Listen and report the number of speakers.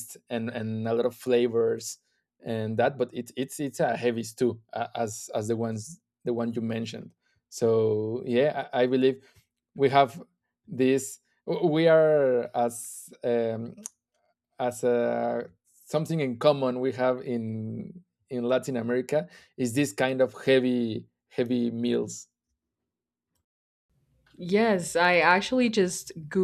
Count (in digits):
2